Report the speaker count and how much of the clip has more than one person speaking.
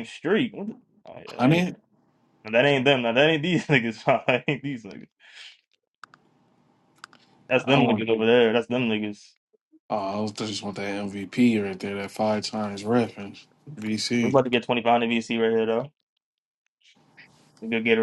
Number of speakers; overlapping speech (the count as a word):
two, about 5%